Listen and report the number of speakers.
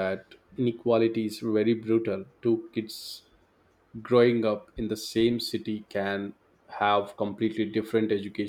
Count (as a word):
one